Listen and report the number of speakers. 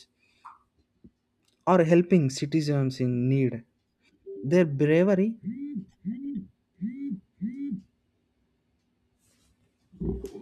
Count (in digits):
1